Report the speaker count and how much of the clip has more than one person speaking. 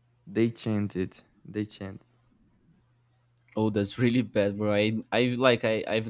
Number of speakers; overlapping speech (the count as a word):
two, no overlap